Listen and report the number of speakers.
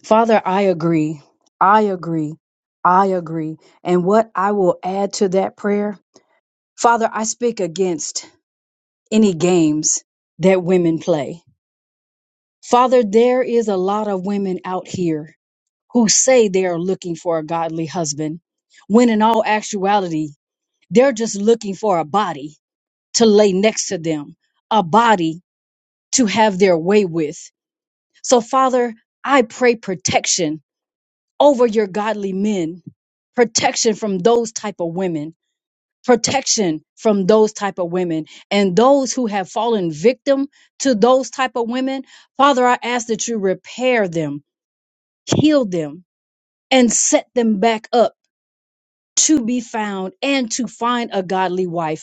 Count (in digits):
1